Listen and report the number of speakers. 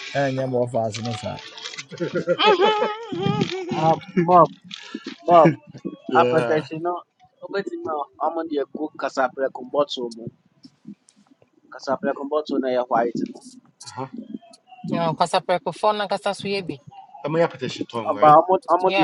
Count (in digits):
5